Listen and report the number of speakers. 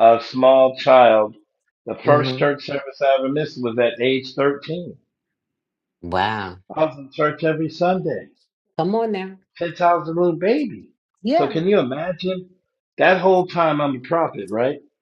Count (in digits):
2